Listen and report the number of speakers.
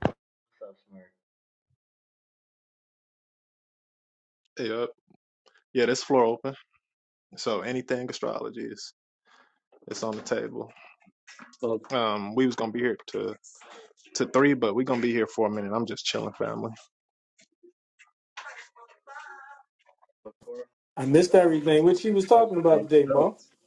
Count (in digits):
3